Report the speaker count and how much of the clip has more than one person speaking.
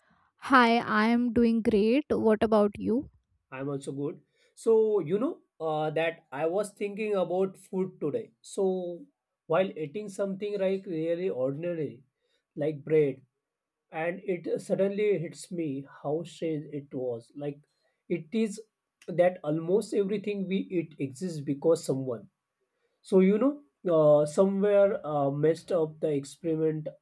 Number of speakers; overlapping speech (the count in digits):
2, no overlap